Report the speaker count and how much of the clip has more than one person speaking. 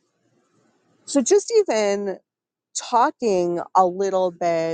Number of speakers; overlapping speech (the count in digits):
1, no overlap